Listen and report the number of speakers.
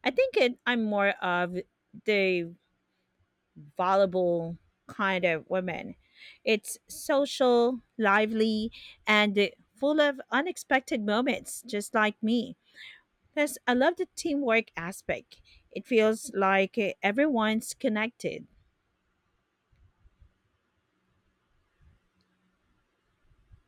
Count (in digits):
1